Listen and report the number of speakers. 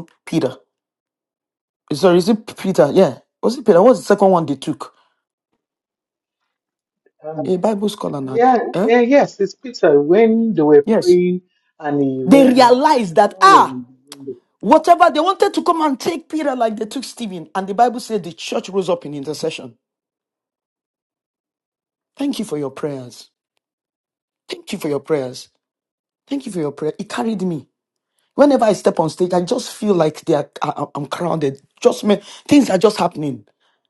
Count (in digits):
2